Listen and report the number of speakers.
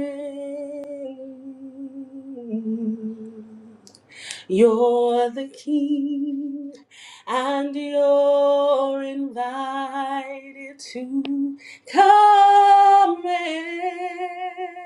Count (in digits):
1